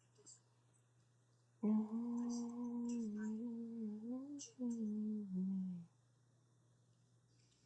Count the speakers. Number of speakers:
zero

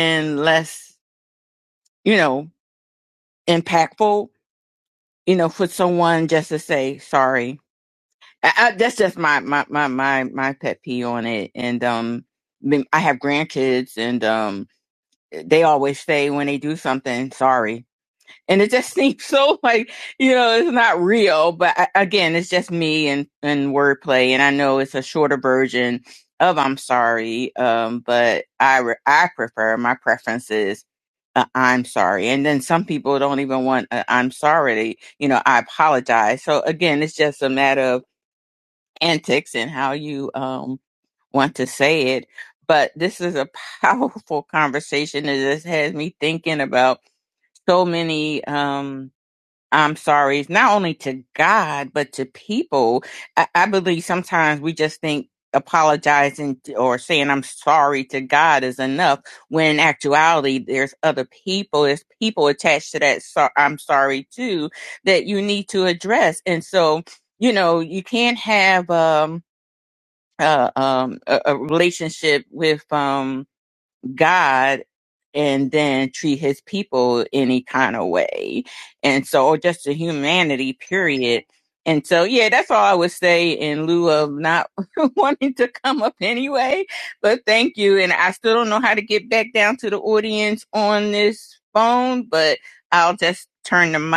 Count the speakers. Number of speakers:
one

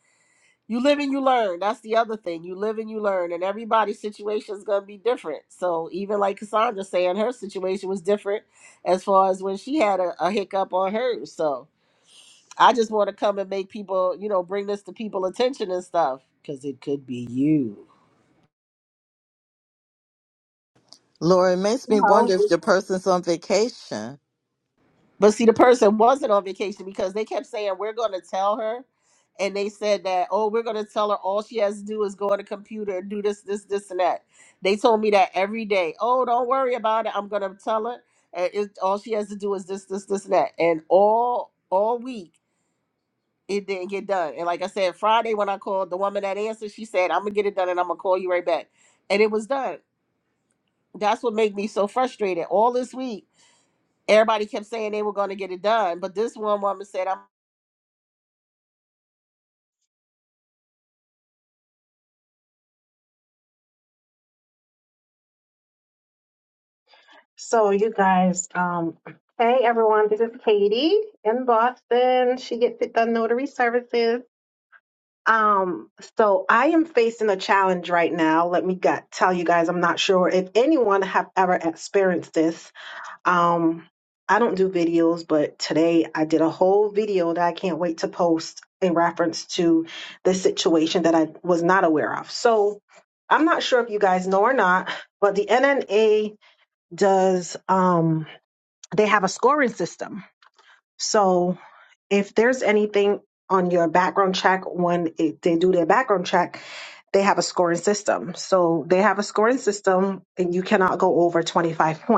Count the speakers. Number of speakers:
three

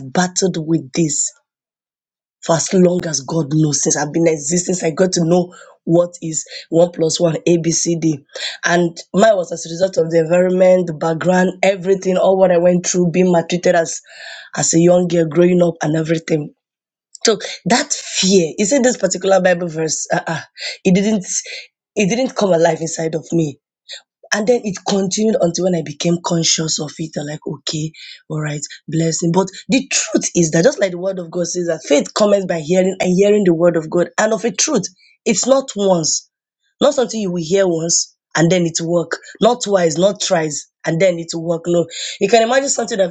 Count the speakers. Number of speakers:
one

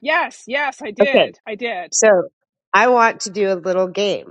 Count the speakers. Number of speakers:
two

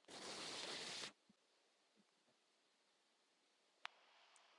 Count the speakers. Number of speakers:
zero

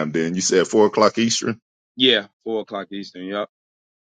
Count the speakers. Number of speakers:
two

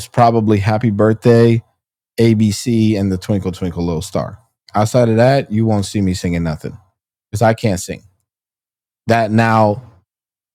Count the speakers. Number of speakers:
one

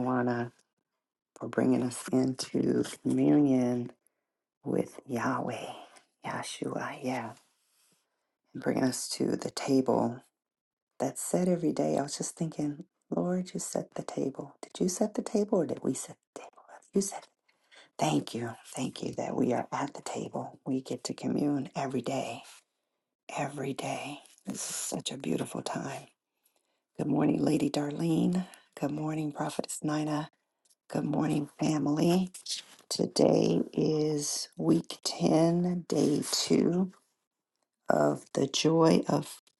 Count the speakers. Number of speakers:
one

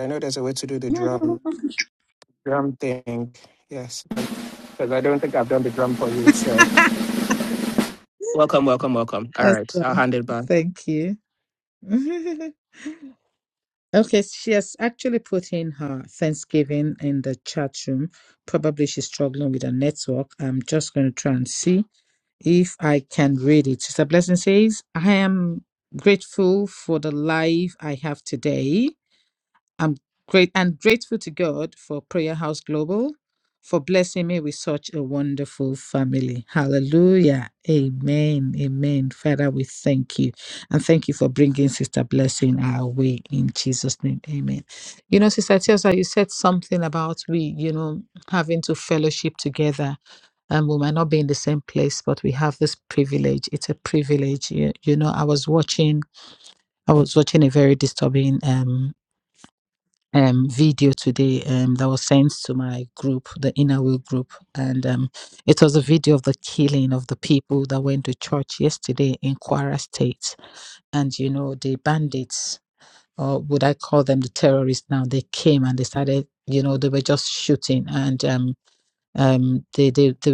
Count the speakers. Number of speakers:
two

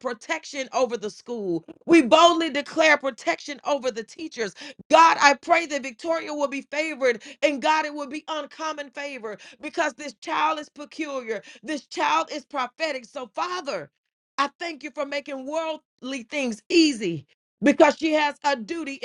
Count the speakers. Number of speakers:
one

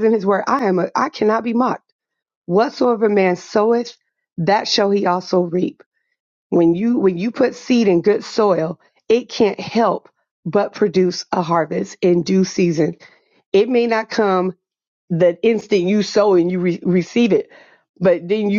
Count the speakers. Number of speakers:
one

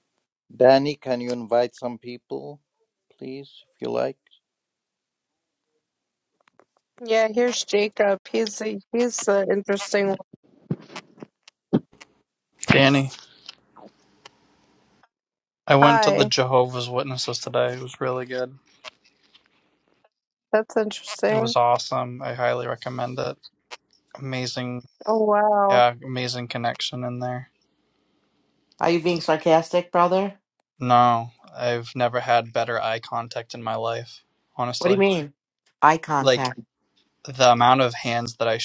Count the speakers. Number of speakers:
four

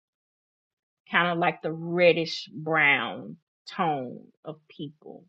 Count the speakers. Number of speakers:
one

